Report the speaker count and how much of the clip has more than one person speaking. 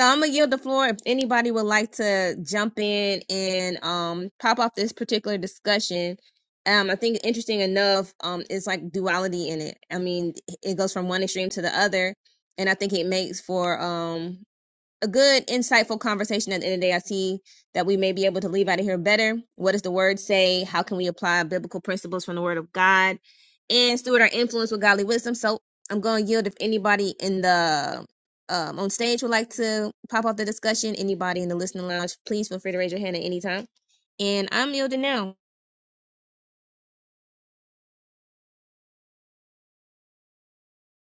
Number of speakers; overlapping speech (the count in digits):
1, no overlap